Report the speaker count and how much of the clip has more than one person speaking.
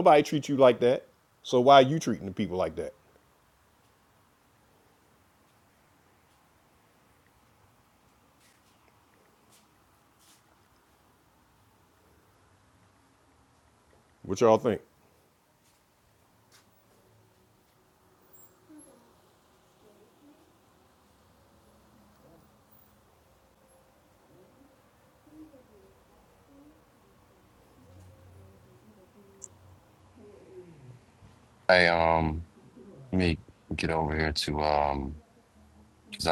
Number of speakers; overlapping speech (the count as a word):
two, no overlap